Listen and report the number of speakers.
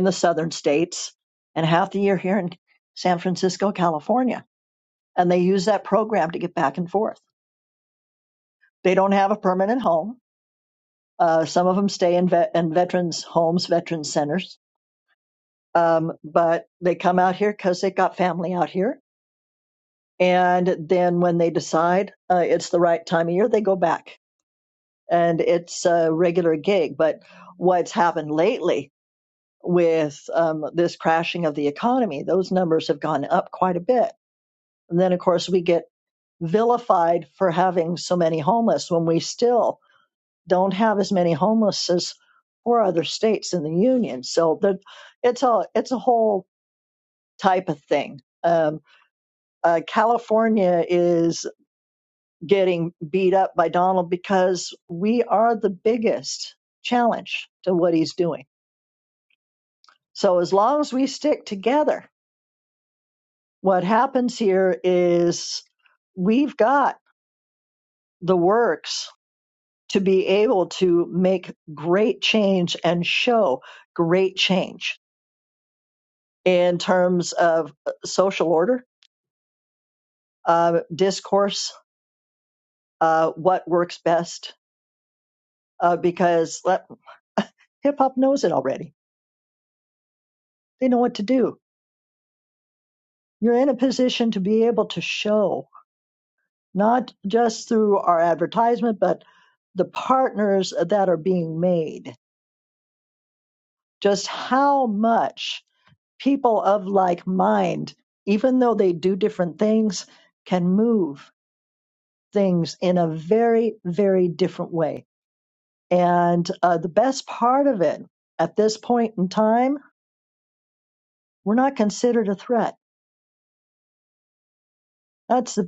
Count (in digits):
1